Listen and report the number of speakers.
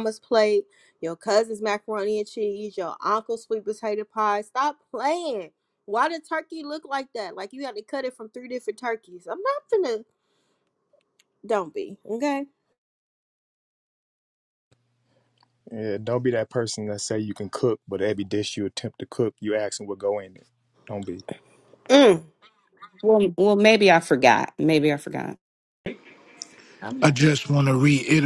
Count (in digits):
4